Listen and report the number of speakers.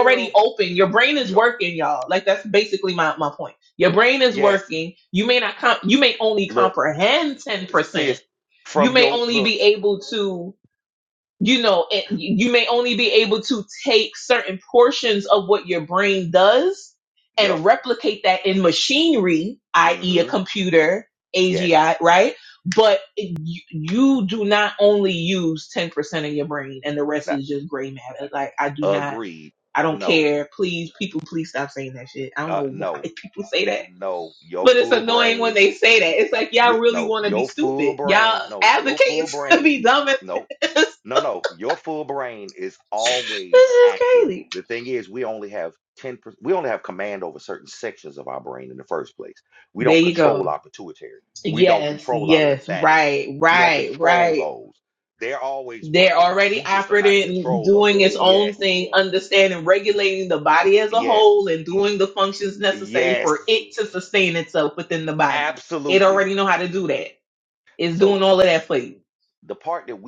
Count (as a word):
two